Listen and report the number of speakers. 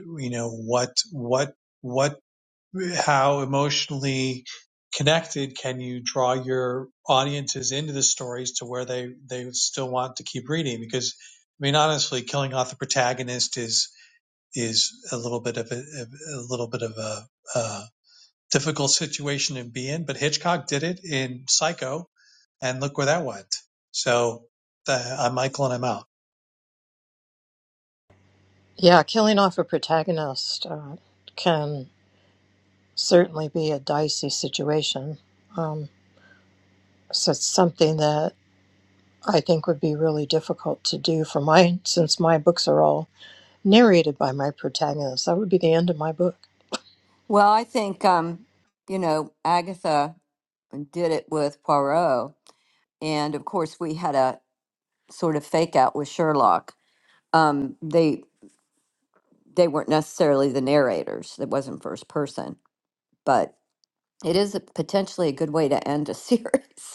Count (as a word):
three